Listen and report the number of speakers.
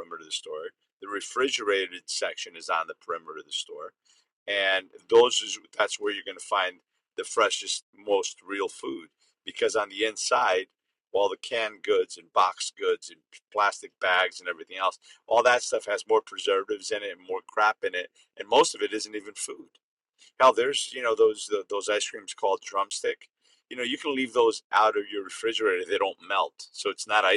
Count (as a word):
one